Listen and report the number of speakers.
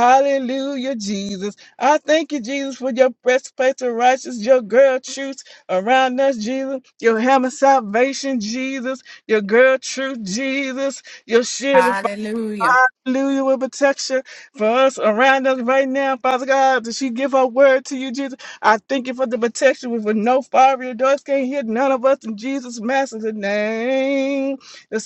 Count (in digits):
2